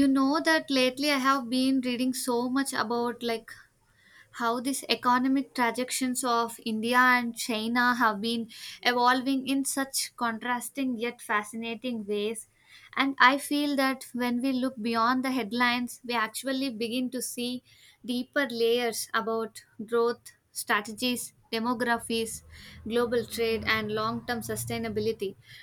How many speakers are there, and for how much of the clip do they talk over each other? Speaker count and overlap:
1, no overlap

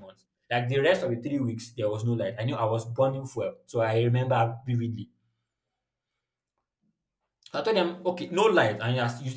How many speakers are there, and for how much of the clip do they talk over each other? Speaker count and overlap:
1, no overlap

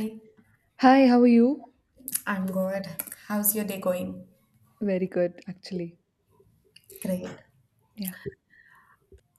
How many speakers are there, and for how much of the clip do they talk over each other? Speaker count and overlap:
2, no overlap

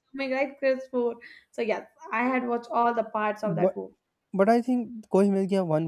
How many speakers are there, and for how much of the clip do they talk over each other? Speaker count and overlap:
2, about 5%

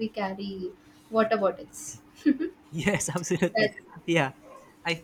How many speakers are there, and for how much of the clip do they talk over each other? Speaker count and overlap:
2, about 4%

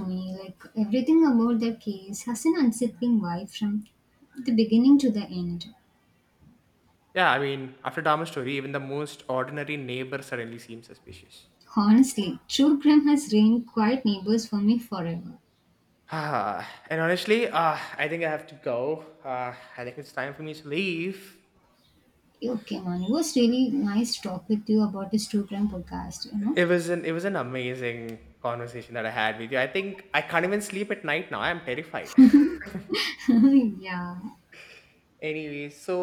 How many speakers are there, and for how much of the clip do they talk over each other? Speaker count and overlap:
2, under 1%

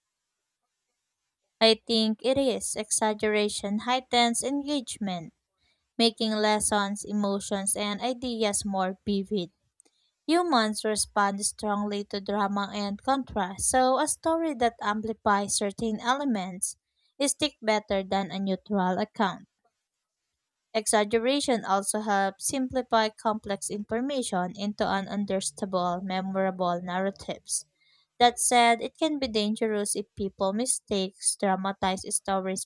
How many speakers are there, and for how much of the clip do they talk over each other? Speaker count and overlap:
1, no overlap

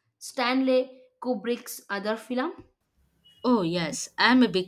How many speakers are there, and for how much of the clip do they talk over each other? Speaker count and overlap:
2, no overlap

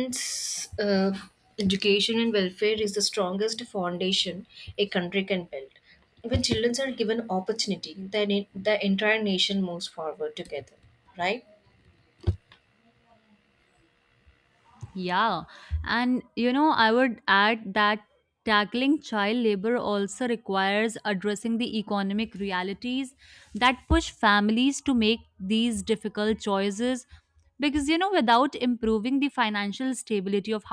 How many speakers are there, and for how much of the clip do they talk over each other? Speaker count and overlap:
2, no overlap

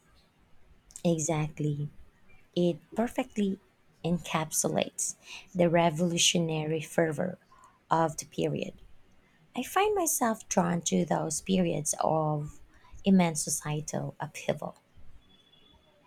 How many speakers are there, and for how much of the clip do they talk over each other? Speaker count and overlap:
1, no overlap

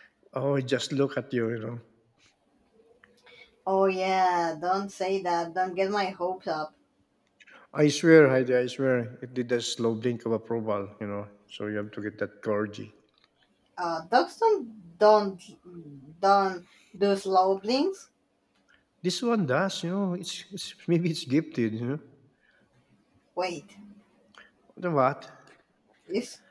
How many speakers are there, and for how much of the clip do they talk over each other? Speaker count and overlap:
2, no overlap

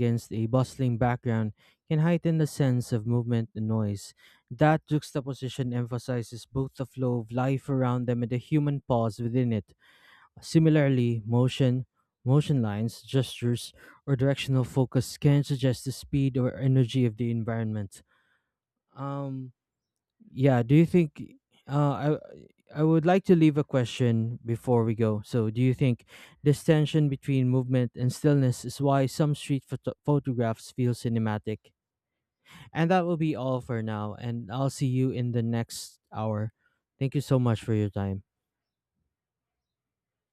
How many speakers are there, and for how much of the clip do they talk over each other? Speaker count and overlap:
1, no overlap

